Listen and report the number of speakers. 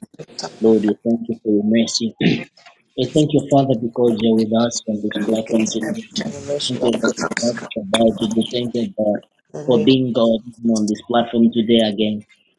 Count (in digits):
2